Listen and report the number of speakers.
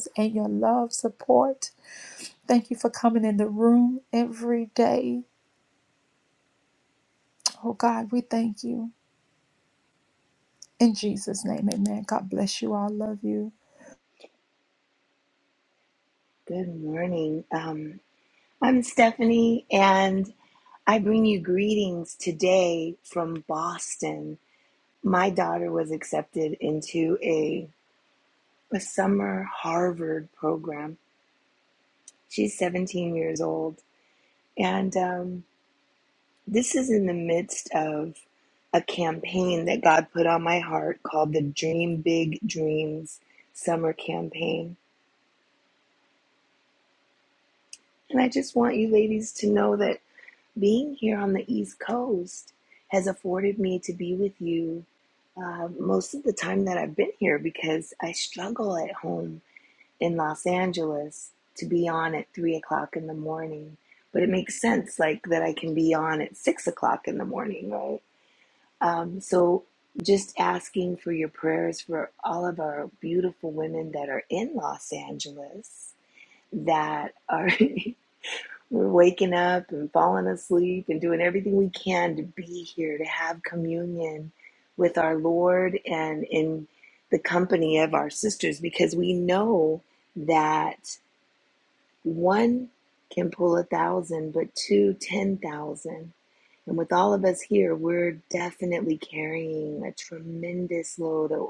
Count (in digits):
2